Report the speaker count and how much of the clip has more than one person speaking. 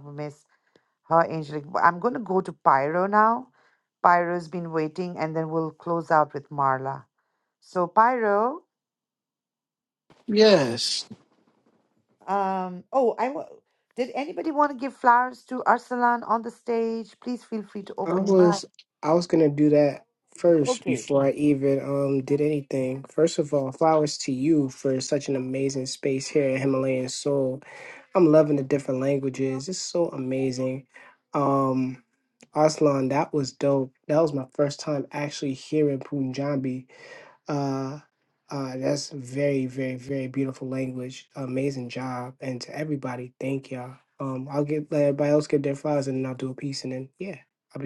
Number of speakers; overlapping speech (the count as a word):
two, about 1%